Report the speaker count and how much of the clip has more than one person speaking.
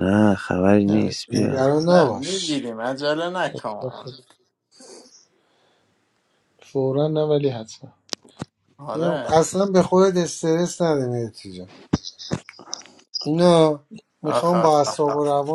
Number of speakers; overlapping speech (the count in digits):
4, about 17%